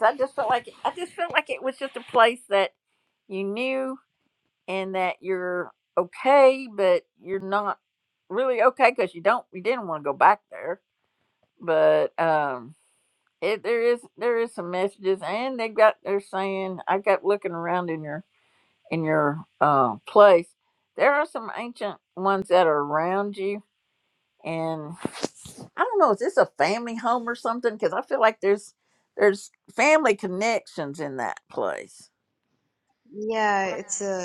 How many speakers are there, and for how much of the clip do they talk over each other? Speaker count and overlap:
two, no overlap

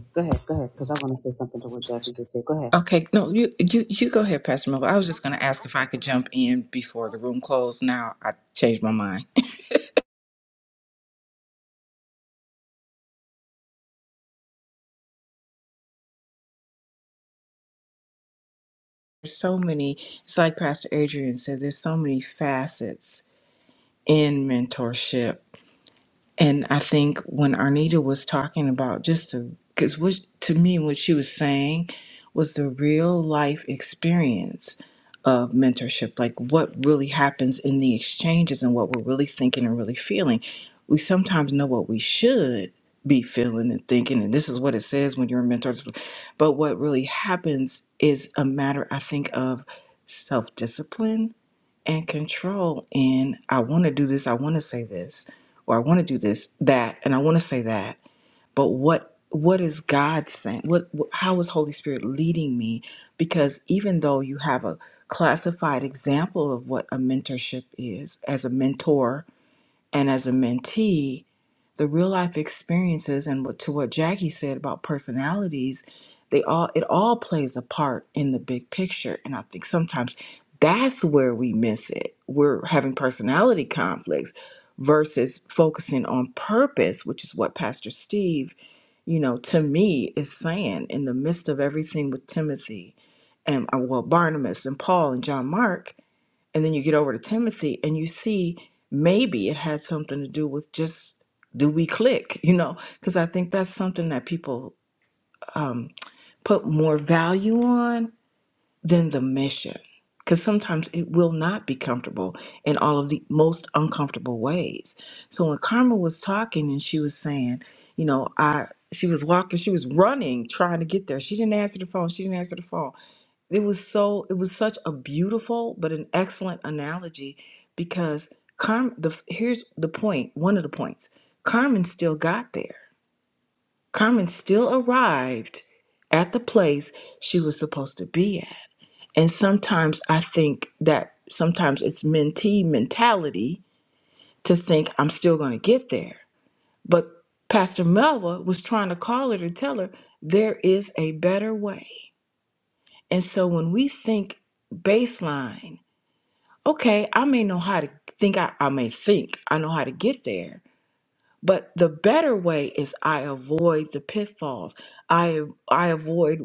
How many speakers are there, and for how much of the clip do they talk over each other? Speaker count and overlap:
two, no overlap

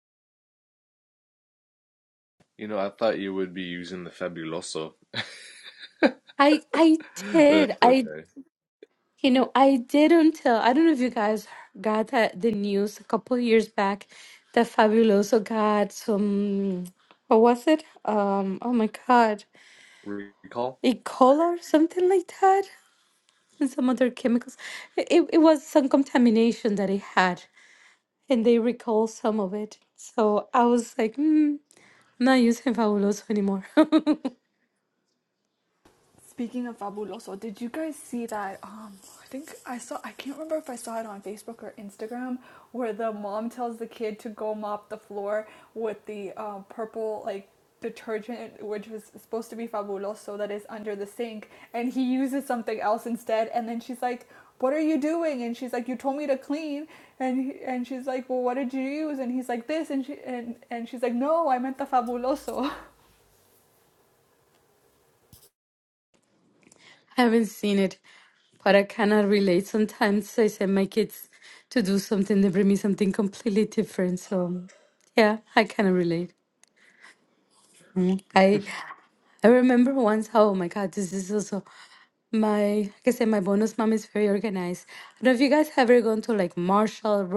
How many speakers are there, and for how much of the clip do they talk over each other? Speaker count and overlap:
three, about 1%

